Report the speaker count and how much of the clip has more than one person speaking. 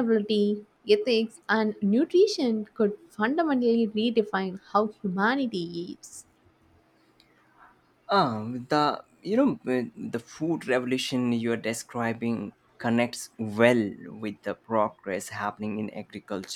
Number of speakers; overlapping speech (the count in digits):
2, no overlap